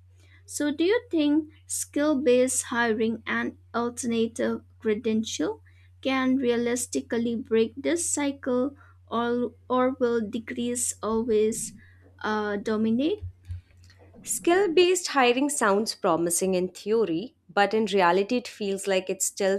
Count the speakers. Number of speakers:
2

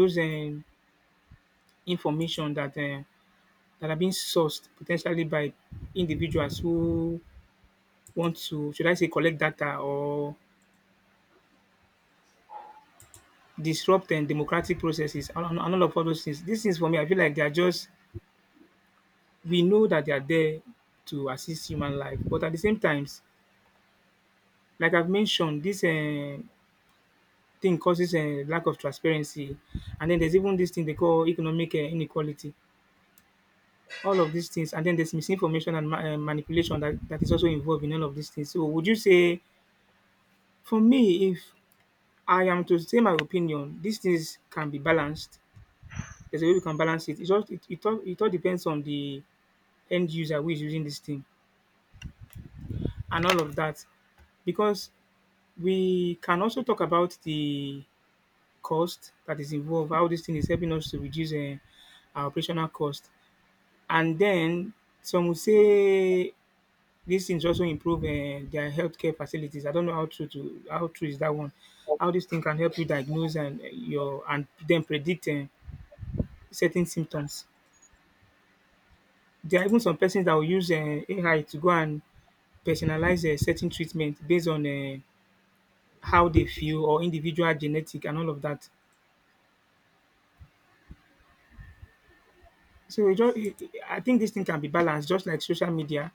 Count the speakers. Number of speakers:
1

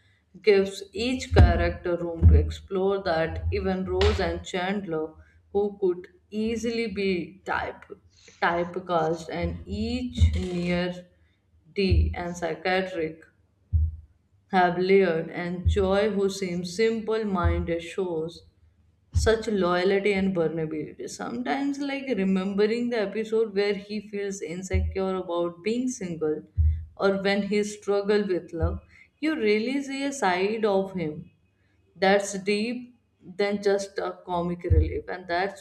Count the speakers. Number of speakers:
1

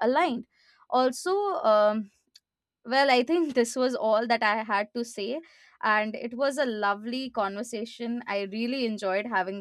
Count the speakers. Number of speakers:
1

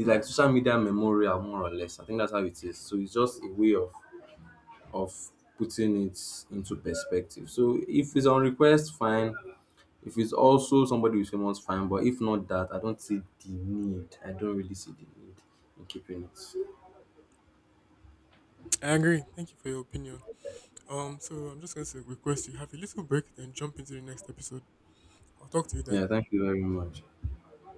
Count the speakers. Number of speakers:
2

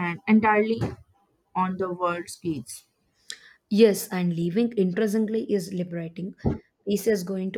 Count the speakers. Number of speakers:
2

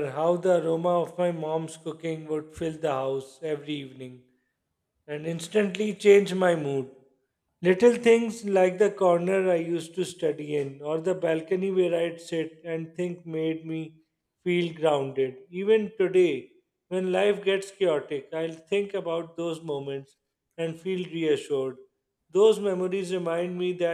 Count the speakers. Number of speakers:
1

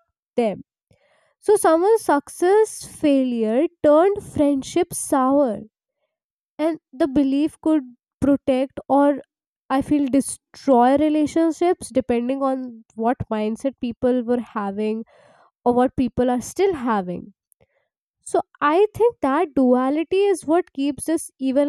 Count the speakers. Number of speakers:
1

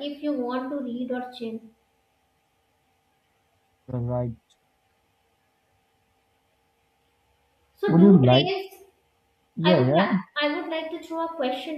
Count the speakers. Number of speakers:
2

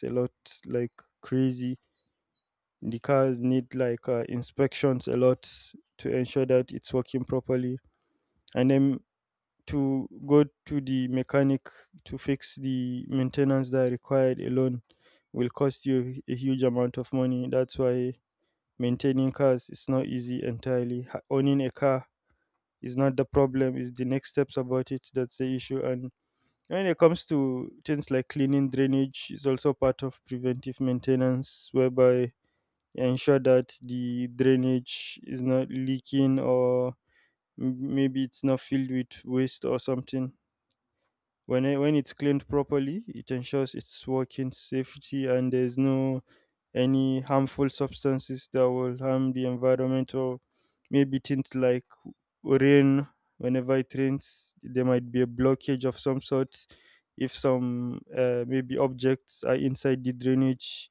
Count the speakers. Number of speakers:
1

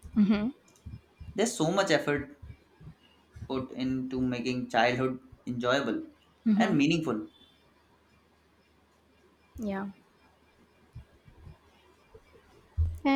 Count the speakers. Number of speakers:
2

